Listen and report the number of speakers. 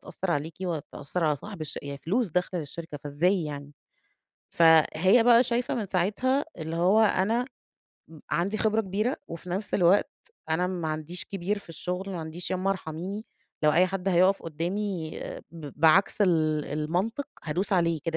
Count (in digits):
1